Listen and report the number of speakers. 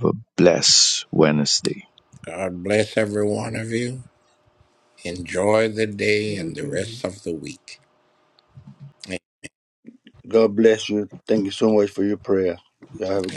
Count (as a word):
three